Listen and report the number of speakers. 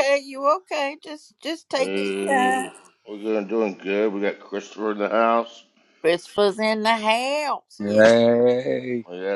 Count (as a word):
three